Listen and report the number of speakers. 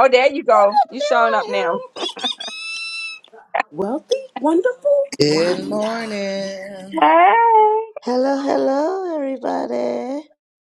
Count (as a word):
four